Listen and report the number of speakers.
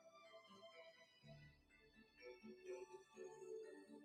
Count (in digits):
0